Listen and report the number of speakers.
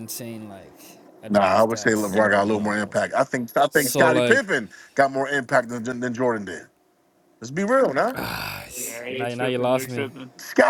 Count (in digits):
3